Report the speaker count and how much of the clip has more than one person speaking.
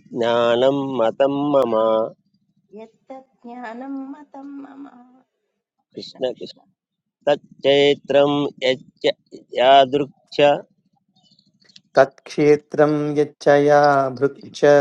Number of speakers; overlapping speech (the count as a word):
three, about 2%